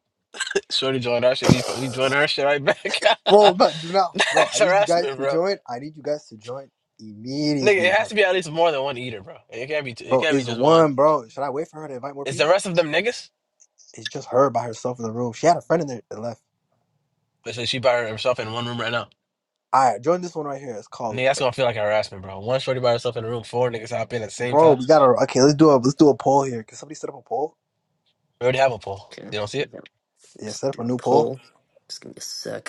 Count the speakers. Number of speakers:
3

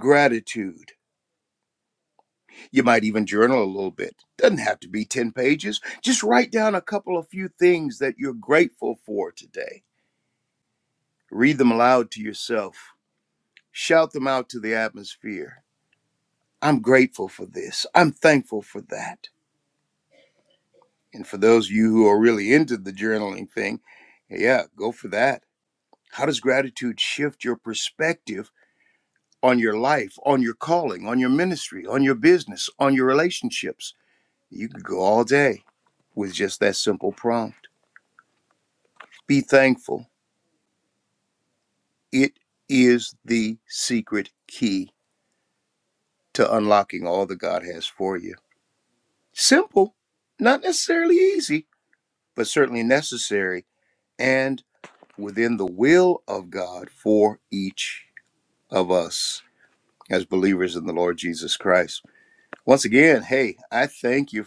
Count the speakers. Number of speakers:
1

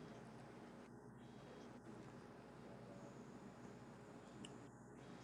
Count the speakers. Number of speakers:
0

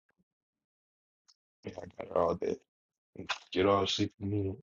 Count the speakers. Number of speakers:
1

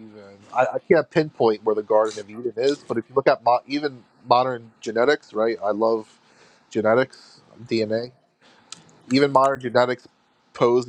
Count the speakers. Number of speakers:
1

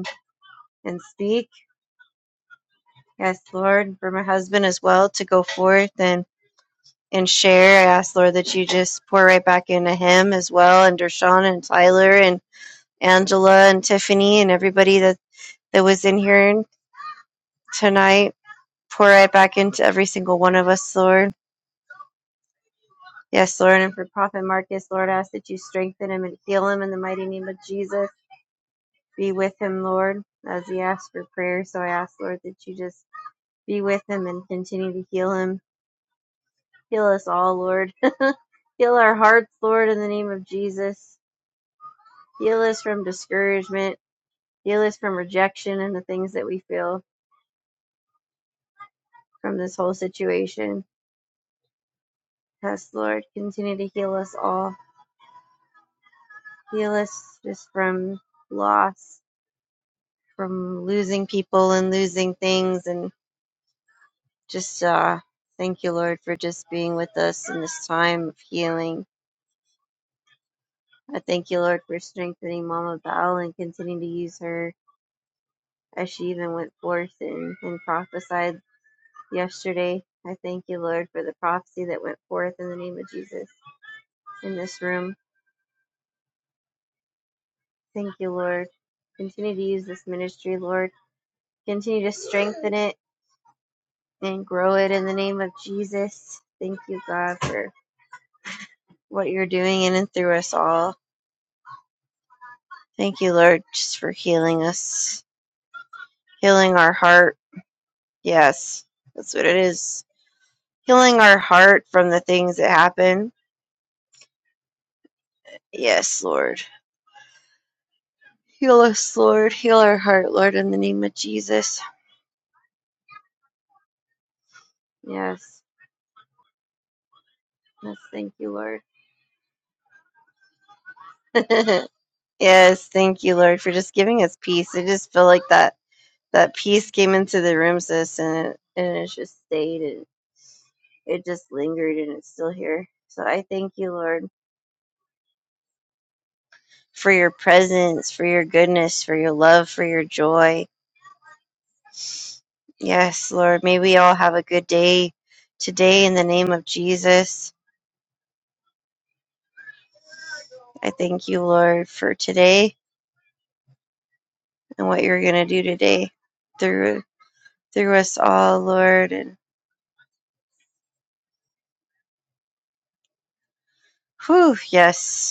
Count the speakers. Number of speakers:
1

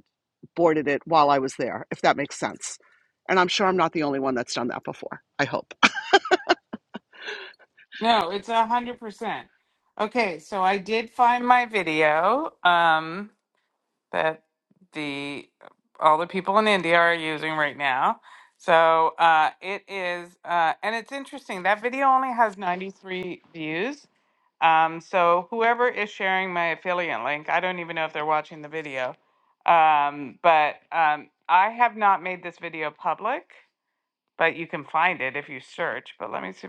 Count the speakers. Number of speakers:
2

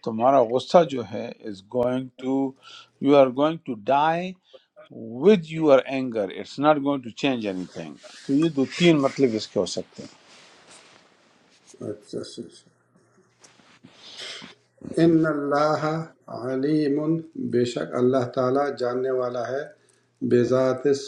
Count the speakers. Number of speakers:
2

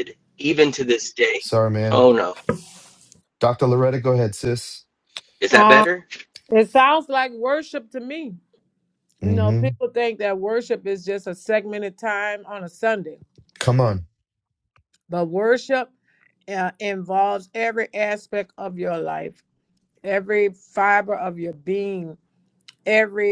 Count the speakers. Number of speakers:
3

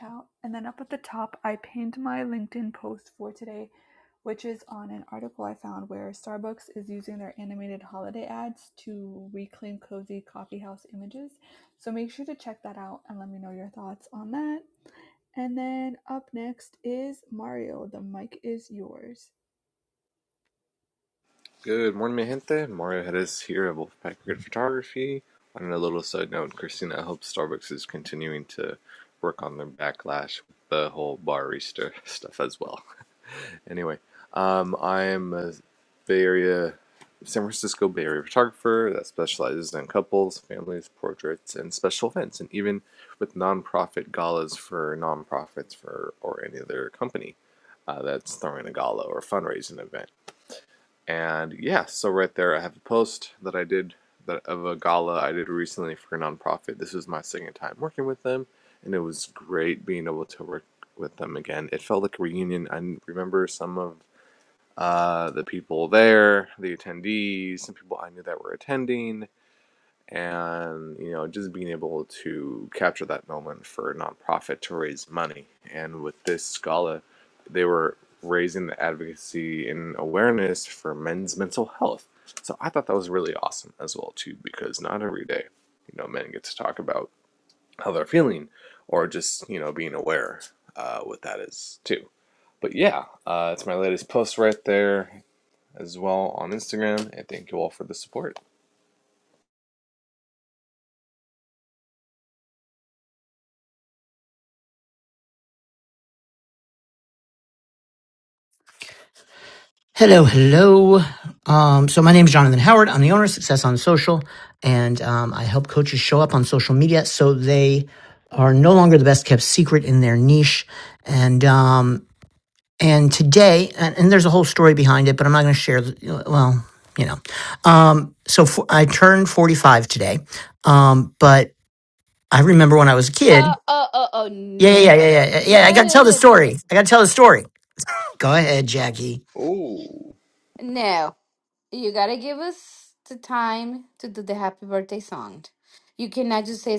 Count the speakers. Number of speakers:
4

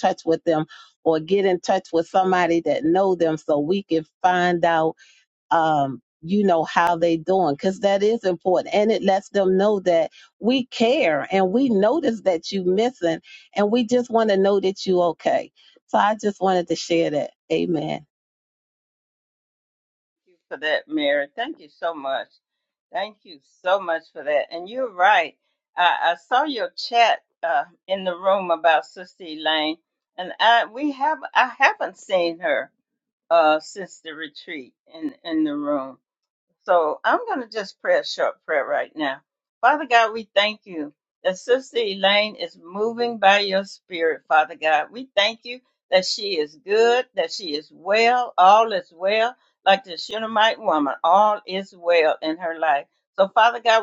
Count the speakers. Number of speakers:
2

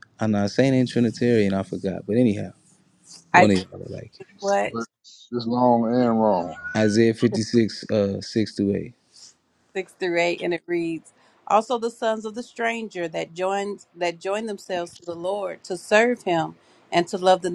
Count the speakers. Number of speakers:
3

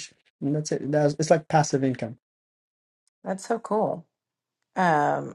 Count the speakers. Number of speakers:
2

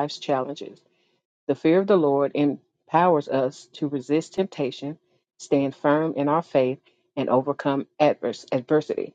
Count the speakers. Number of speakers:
1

